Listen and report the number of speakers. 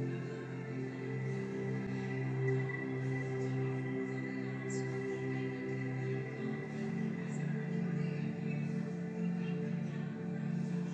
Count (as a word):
zero